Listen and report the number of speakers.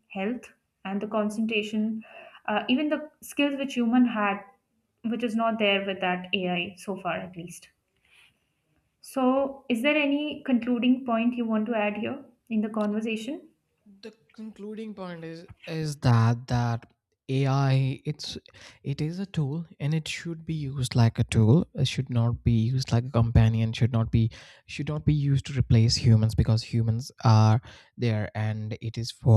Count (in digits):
2